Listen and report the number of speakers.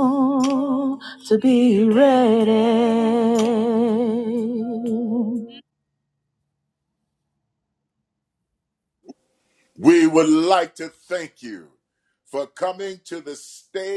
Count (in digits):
2